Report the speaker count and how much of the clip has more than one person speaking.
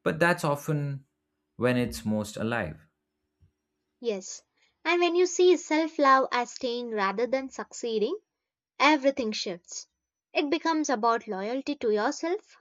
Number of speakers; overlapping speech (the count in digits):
2, no overlap